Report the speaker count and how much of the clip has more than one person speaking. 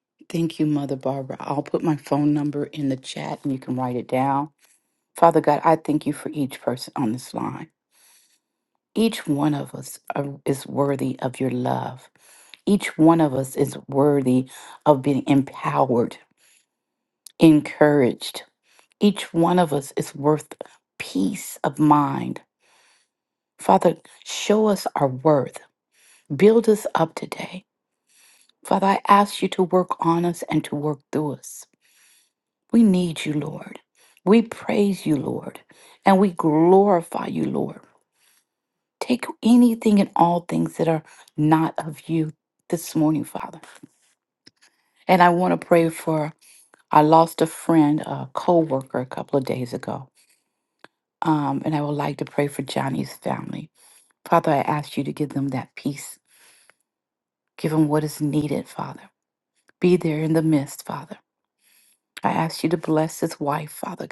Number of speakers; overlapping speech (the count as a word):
one, no overlap